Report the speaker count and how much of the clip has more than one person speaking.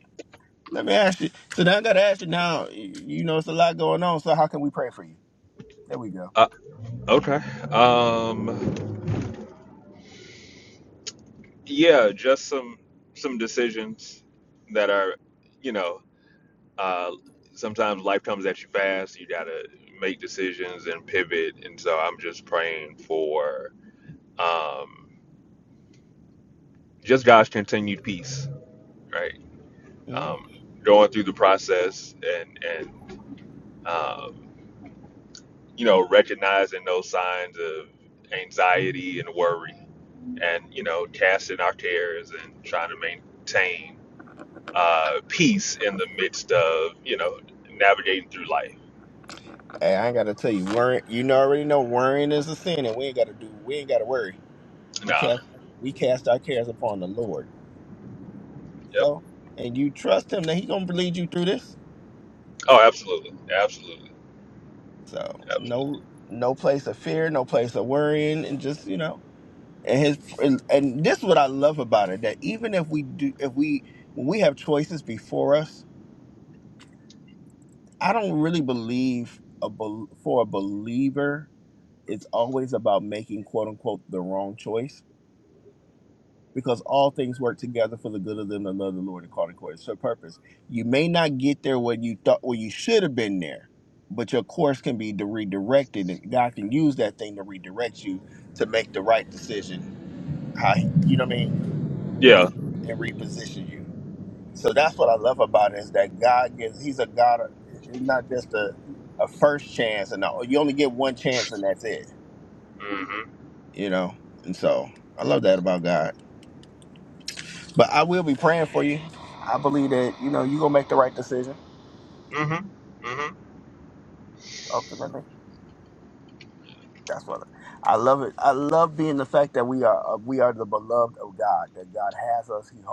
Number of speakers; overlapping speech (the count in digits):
2, about 1%